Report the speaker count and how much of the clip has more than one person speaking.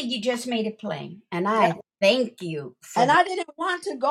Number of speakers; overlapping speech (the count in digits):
2, about 9%